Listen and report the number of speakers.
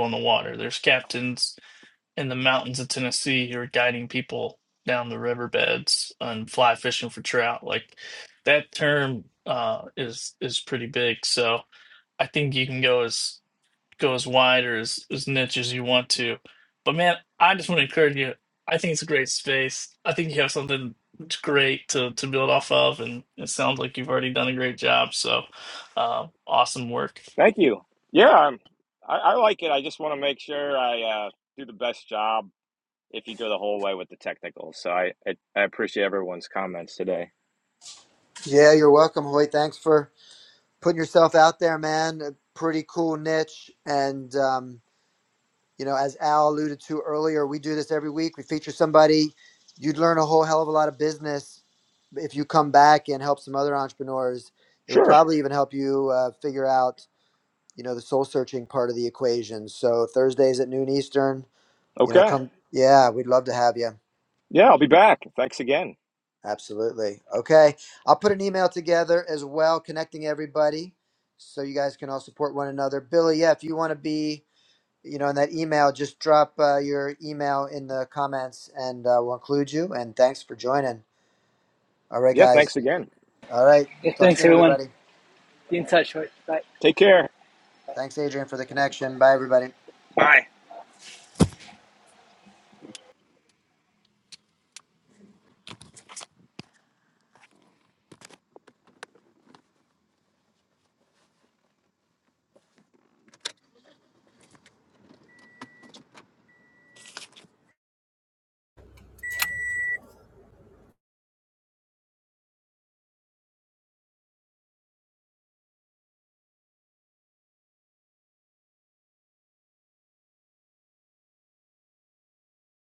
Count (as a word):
four